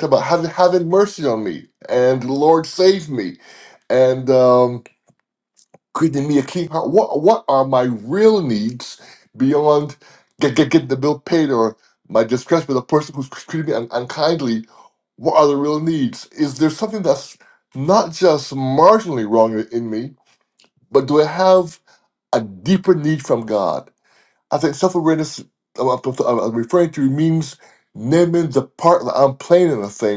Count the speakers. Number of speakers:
1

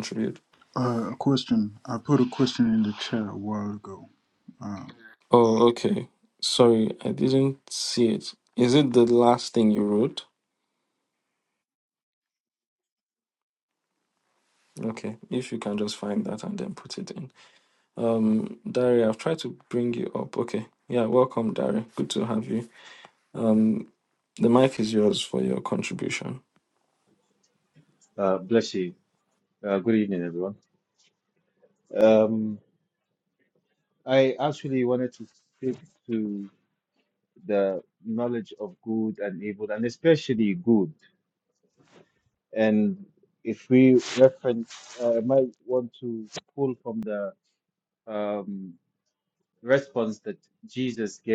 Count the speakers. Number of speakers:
3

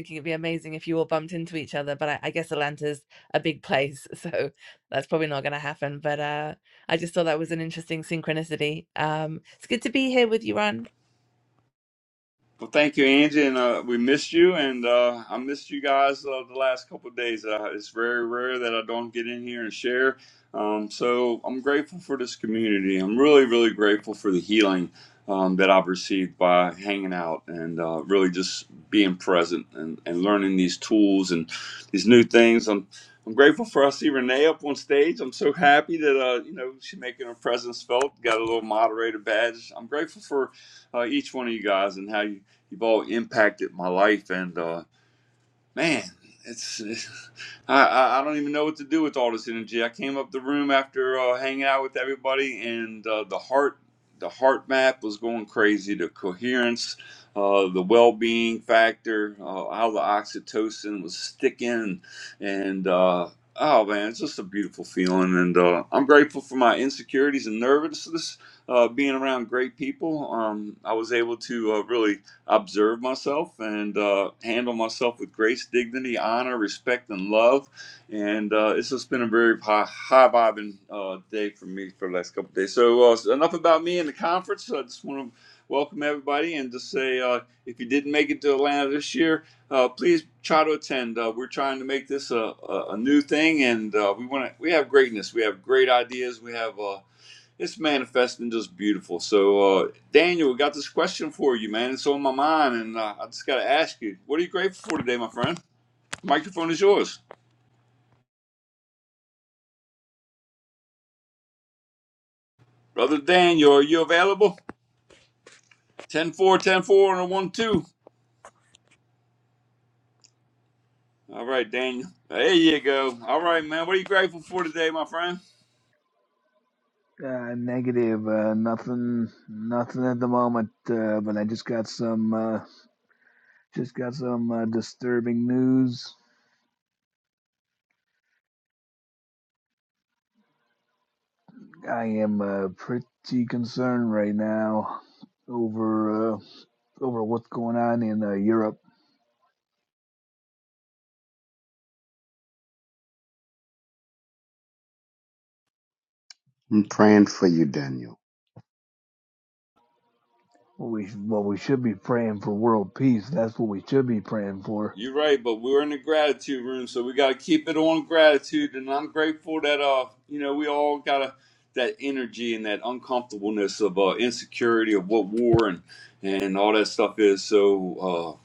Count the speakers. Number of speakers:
4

